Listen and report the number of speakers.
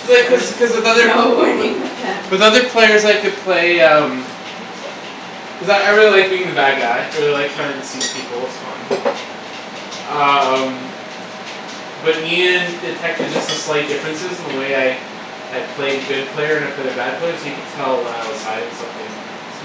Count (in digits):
2